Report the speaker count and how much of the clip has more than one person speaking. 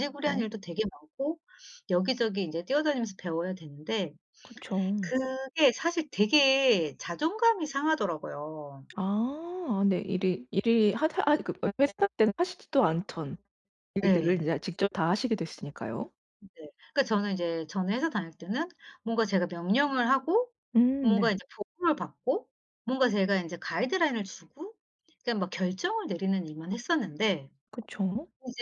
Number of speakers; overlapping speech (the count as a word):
two, about 3%